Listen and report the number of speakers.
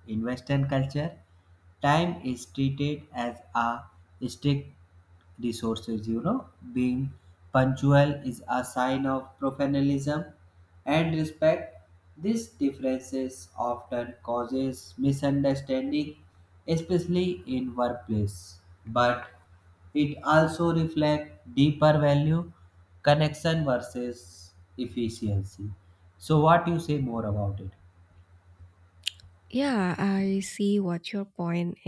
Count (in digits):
2